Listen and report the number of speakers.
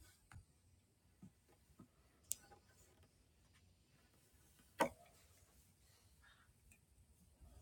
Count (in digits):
0